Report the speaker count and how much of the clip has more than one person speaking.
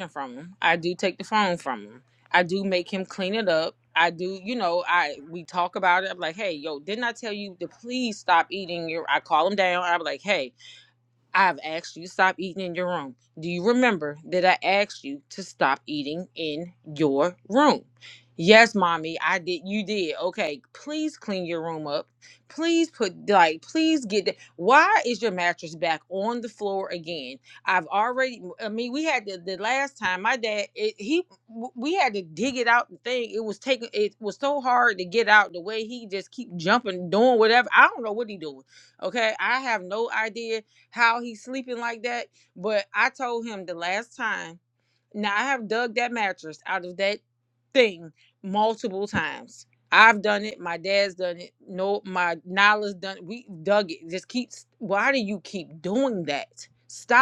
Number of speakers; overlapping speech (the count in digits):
1, no overlap